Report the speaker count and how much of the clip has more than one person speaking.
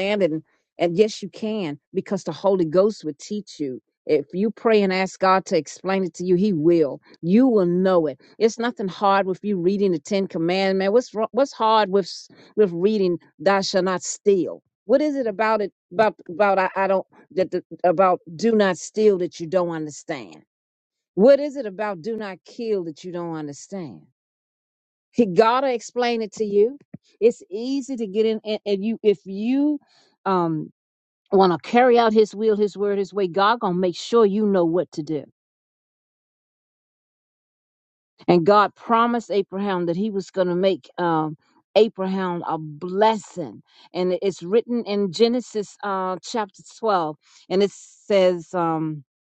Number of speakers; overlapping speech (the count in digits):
1, no overlap